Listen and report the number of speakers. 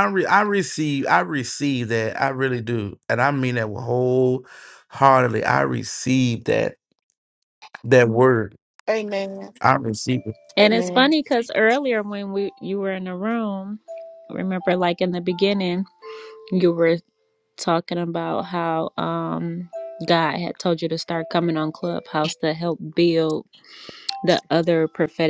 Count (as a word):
three